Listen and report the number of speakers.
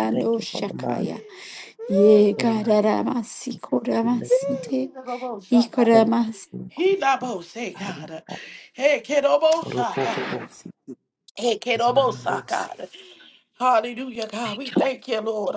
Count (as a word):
three